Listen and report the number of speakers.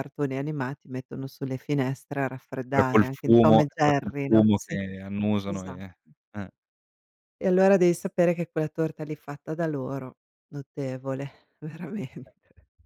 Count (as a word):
two